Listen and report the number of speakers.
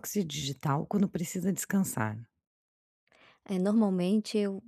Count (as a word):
two